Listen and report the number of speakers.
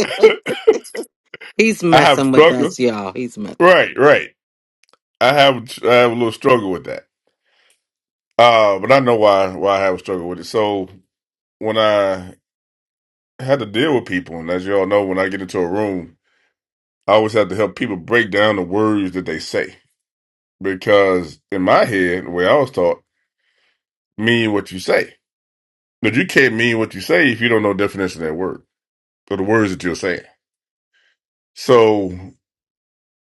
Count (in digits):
2